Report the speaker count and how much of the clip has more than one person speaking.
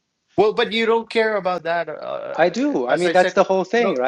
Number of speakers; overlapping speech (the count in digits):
2, about 22%